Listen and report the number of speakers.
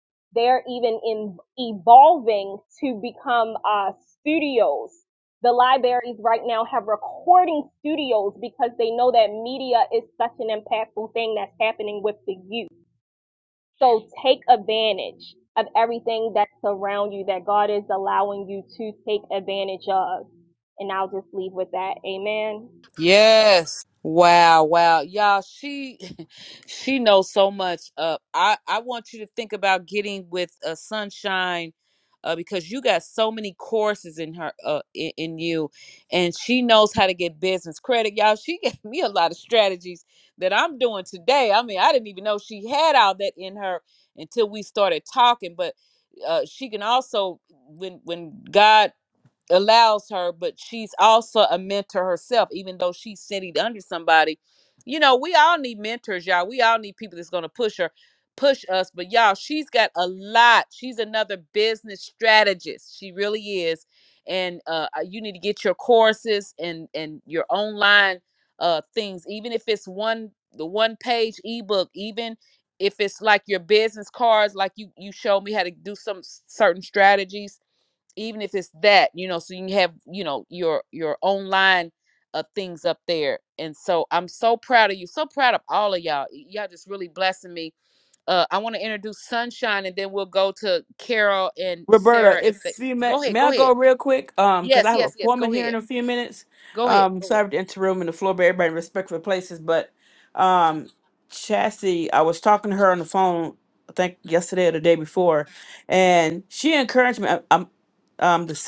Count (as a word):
three